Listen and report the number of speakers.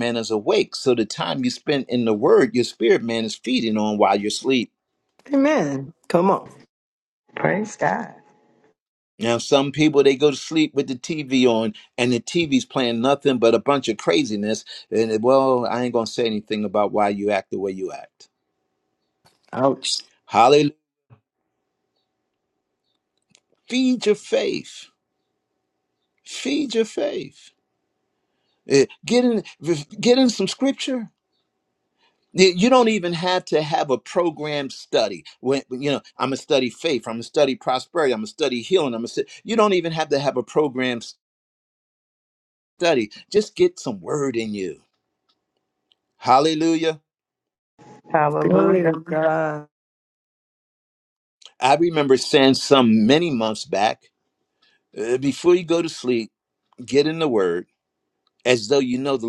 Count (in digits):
3